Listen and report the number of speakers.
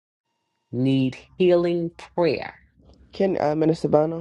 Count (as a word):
two